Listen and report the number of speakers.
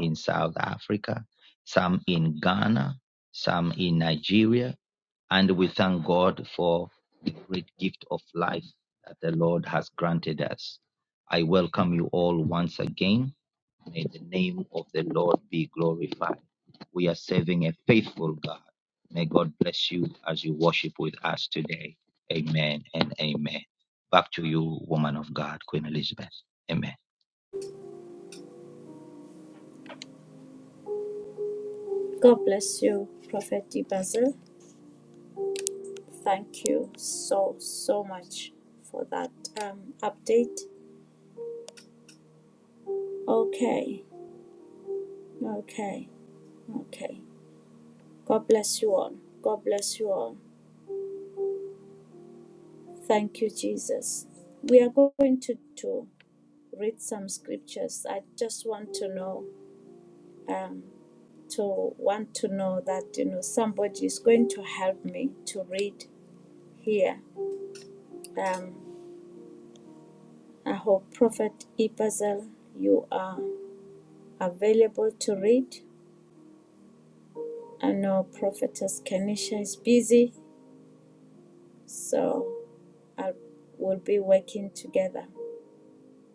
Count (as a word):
two